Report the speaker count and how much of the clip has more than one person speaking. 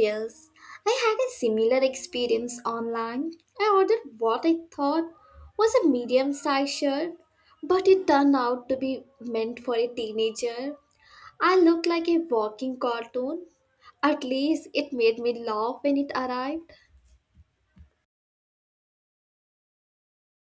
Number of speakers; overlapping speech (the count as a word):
one, no overlap